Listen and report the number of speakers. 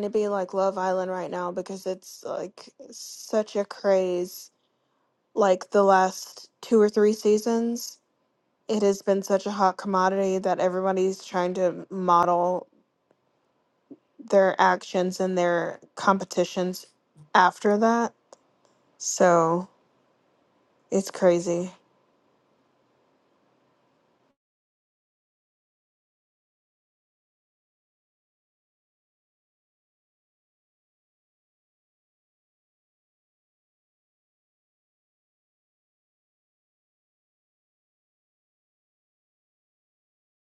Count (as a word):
one